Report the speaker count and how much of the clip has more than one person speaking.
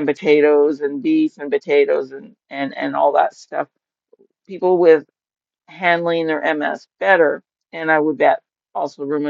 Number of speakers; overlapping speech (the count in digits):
1, no overlap